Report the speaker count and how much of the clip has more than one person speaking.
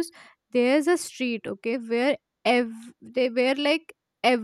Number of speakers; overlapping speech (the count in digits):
1, no overlap